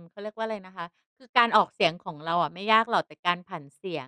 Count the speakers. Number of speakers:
1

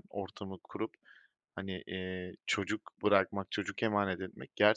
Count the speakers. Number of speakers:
1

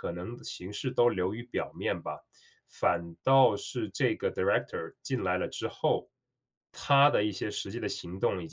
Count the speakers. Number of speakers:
1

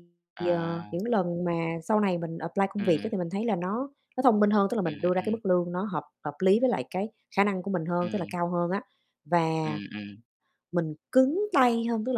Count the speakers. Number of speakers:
2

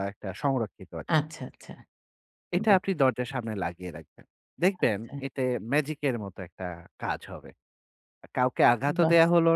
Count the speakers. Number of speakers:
2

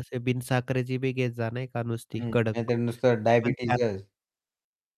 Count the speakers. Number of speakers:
2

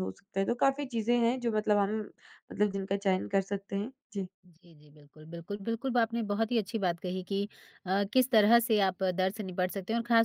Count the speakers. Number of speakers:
2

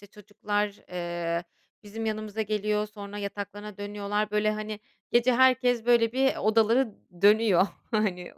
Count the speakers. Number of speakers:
1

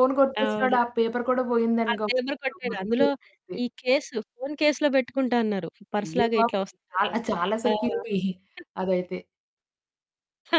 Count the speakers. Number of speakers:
2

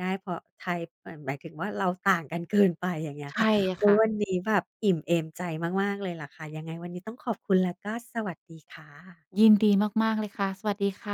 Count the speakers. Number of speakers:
2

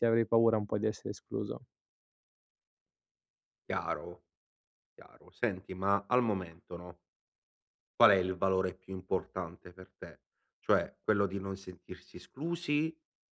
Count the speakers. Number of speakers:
2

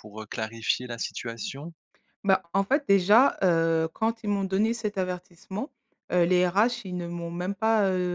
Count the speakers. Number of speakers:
2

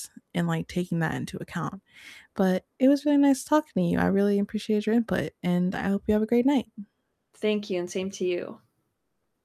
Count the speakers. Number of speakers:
2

